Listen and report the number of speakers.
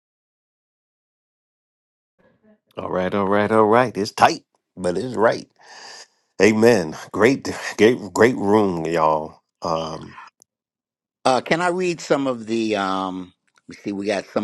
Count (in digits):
2